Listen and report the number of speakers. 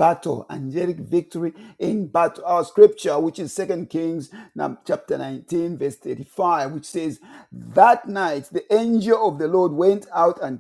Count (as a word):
one